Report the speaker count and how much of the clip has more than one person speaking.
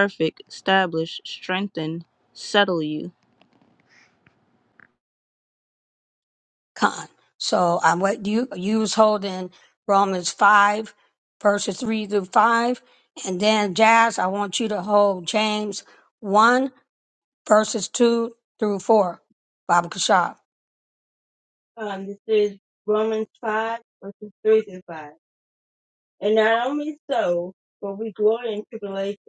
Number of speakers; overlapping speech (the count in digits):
3, no overlap